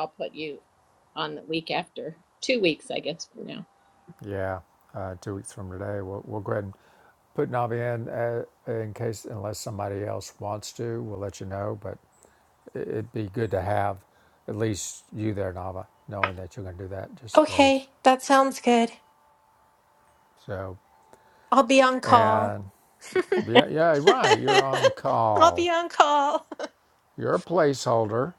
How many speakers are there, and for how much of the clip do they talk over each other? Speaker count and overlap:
three, about 4%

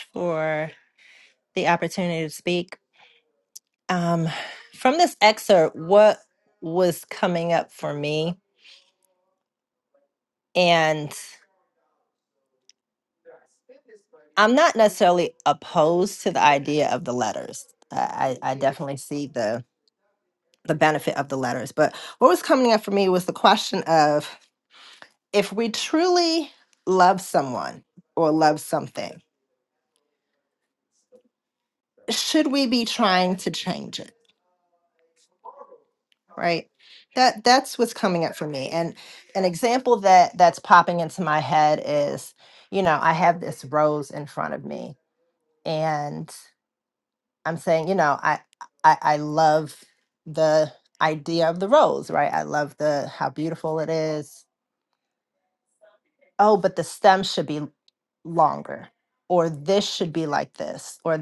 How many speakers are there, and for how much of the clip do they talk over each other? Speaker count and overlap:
one, no overlap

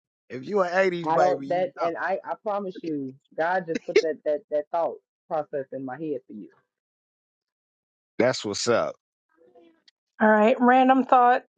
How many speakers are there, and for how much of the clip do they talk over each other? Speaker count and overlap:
three, about 8%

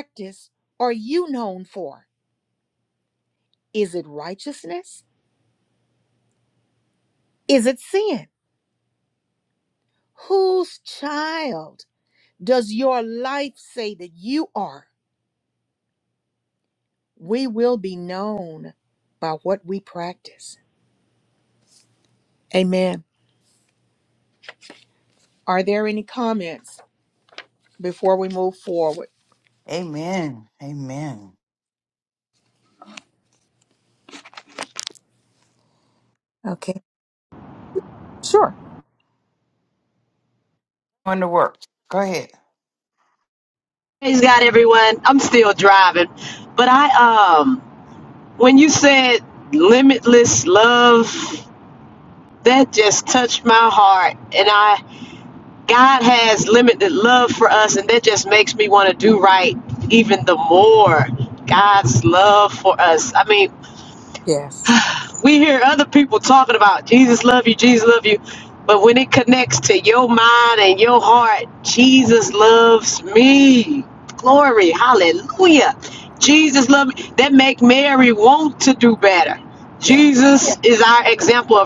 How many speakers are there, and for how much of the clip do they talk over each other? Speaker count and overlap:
three, under 1%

